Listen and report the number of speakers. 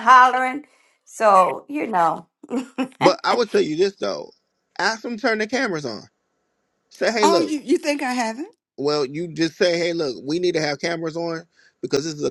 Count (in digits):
3